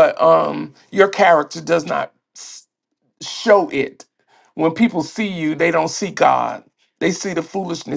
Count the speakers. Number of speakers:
1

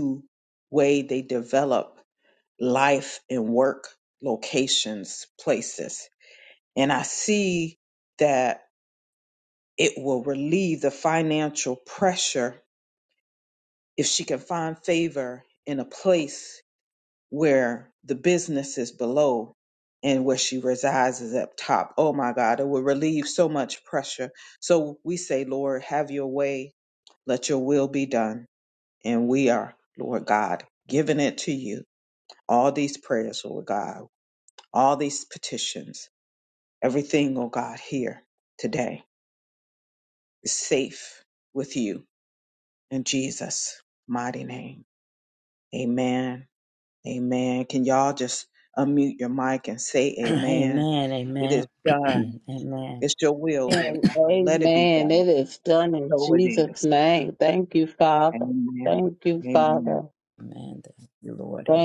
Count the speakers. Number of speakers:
3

